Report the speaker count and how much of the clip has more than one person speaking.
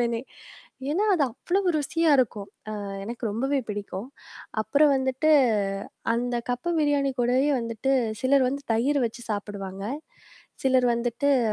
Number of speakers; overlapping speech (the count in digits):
1, no overlap